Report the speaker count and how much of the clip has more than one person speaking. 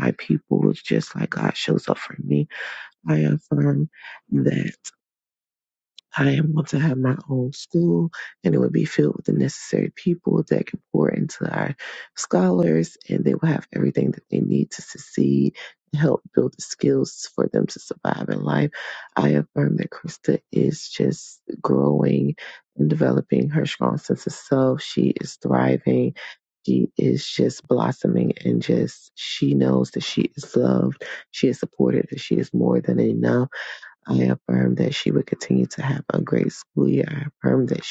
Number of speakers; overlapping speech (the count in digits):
1, no overlap